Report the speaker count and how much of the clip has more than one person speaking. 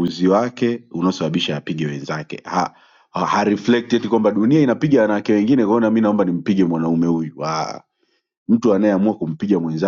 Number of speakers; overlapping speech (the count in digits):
1, no overlap